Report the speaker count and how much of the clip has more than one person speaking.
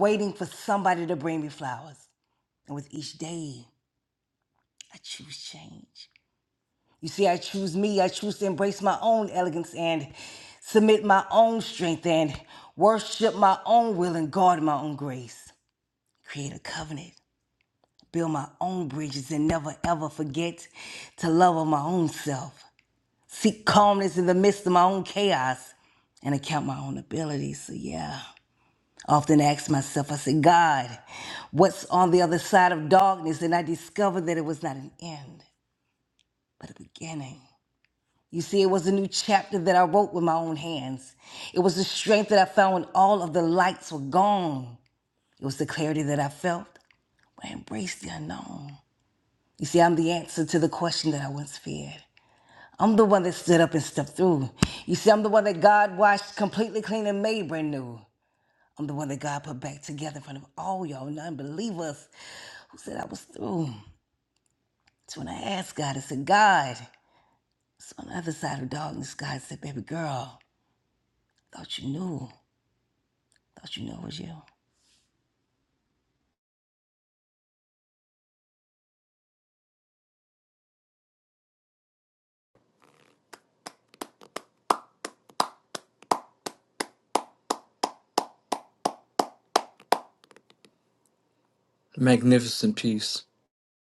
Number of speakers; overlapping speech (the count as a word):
two, no overlap